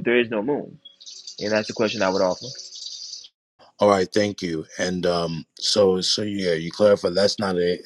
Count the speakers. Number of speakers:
2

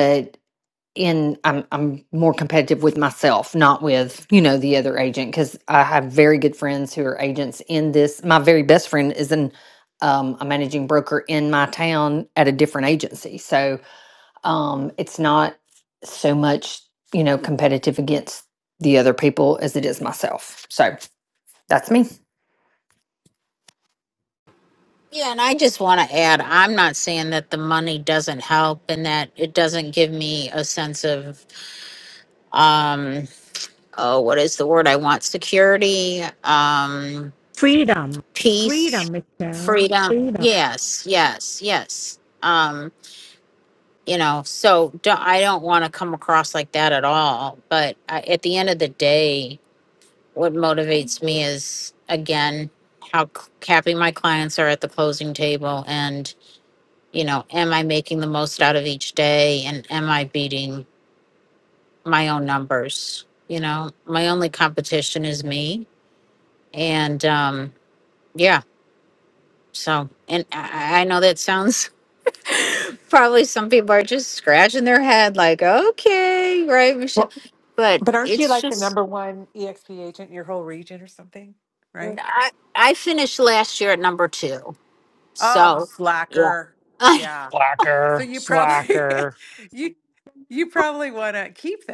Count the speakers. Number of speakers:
5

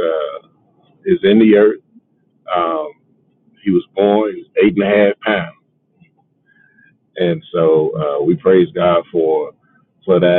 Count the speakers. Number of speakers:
1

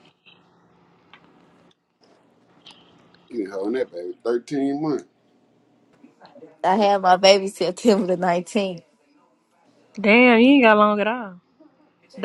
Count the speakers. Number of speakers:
3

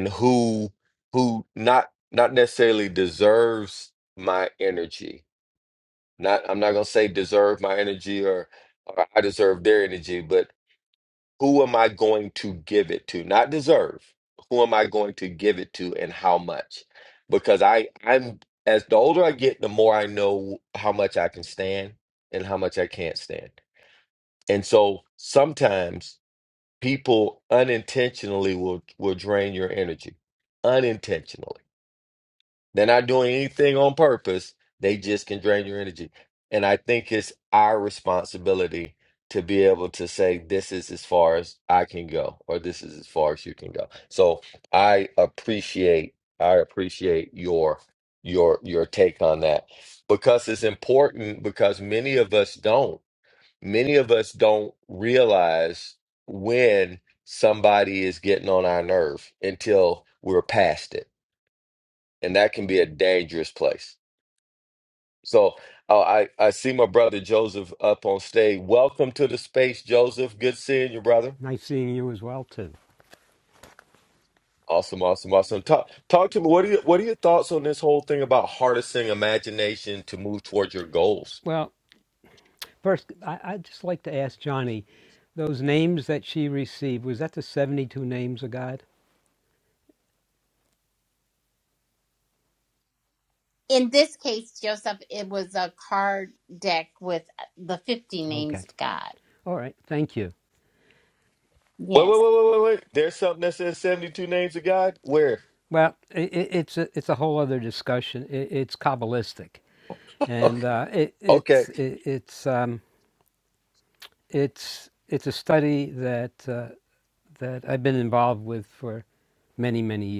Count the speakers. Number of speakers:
3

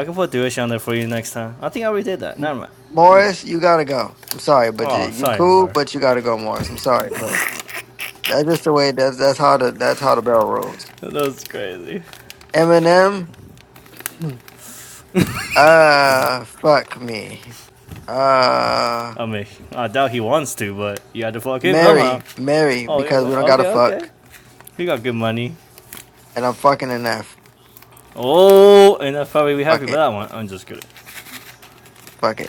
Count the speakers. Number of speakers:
2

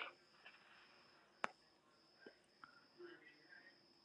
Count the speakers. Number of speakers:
0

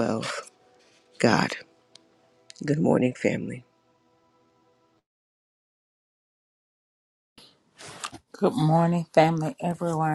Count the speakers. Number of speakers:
2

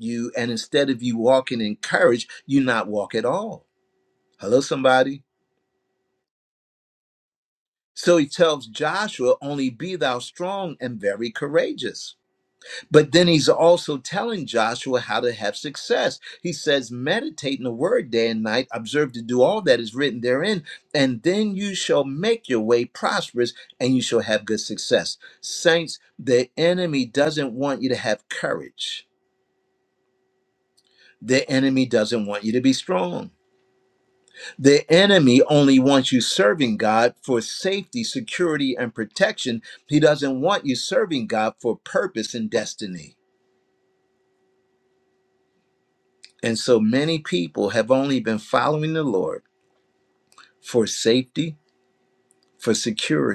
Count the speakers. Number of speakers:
1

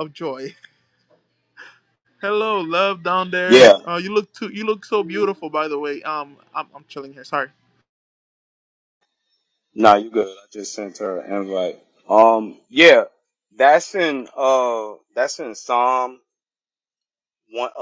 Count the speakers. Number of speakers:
2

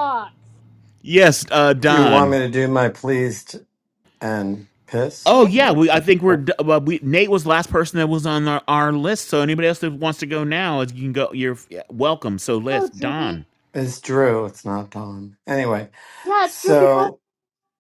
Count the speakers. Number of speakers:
3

